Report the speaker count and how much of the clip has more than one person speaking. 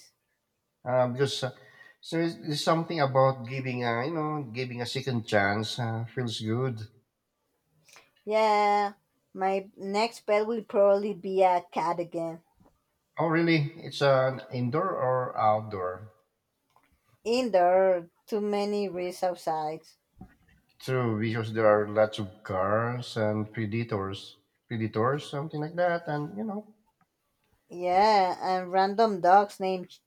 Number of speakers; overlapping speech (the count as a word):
two, no overlap